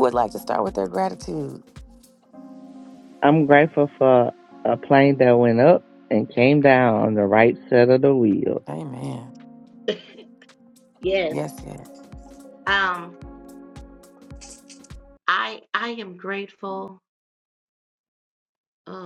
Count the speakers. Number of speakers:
3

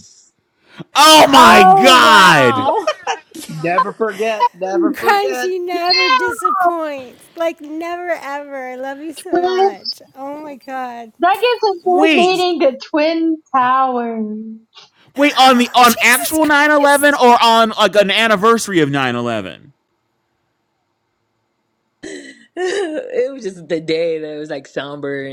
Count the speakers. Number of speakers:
5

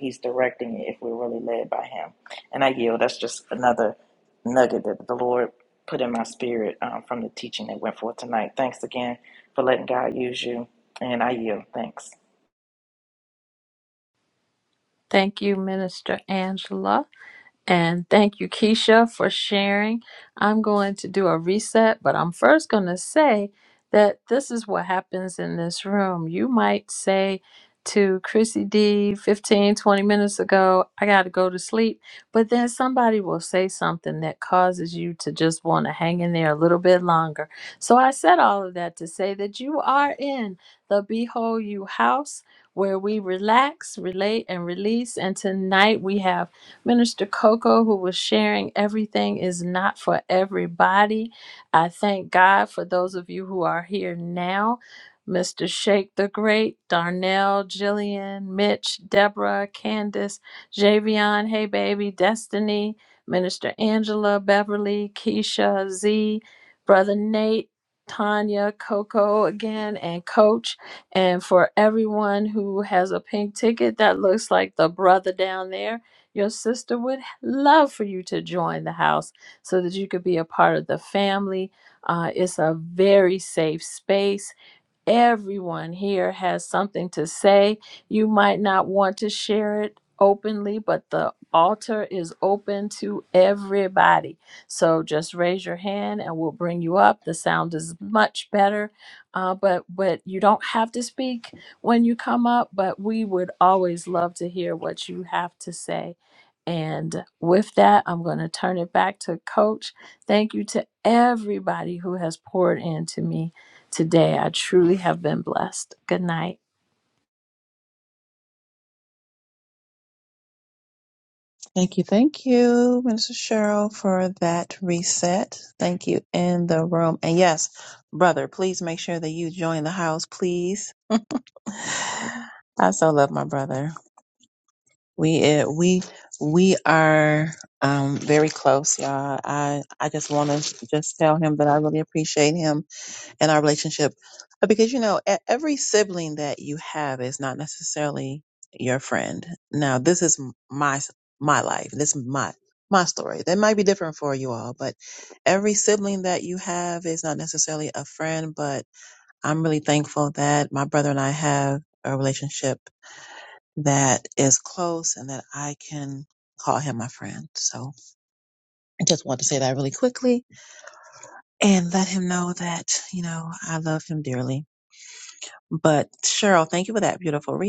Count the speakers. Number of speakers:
3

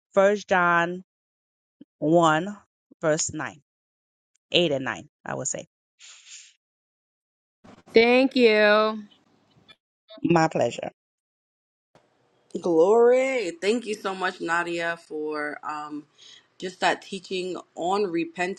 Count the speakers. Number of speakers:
3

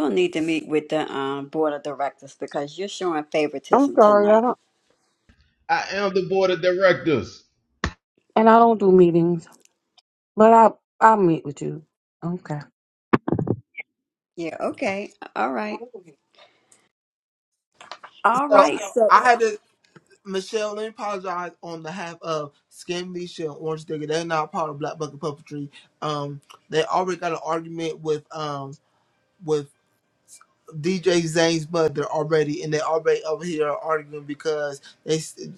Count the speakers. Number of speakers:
4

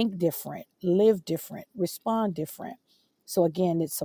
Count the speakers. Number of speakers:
1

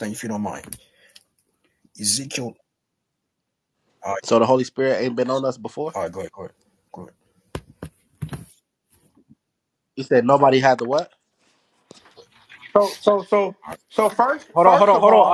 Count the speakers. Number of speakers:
3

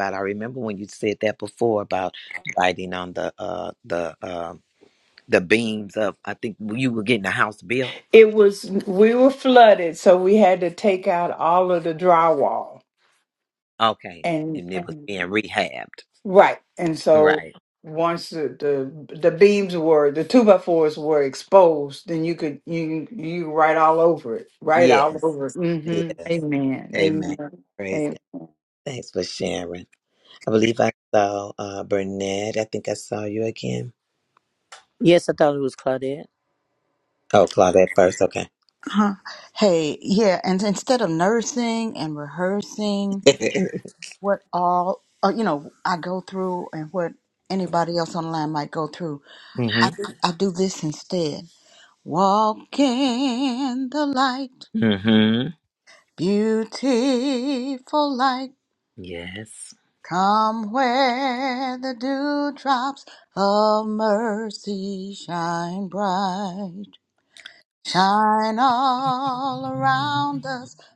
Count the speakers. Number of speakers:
4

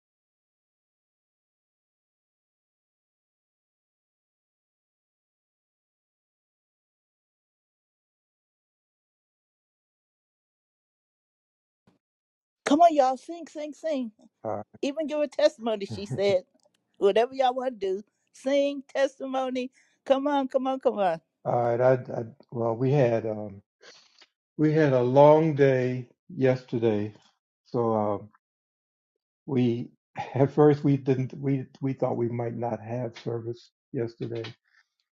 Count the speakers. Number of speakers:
2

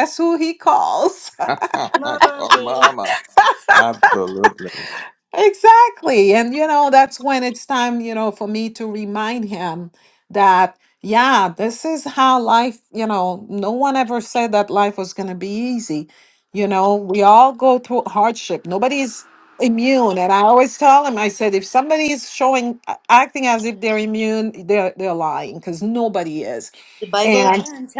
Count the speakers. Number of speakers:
3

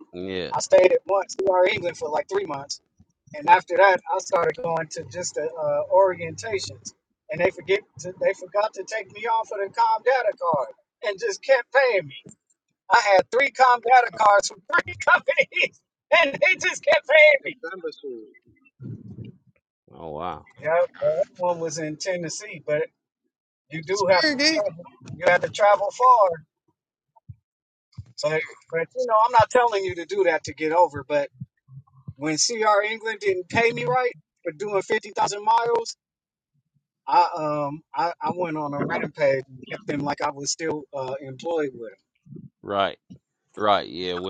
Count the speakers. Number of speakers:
3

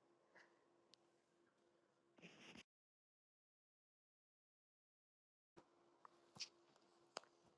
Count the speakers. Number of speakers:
0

